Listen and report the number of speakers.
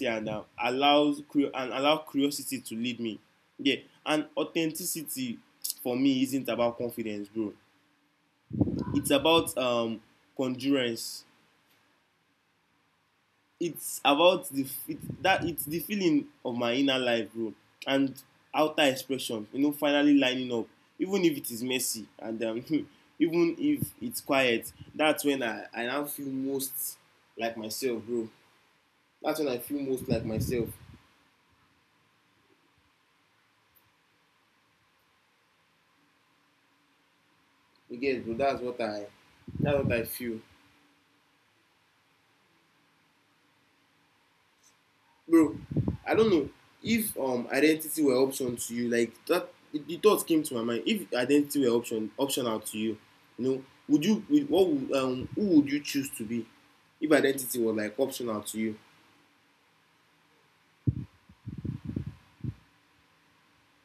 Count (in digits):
1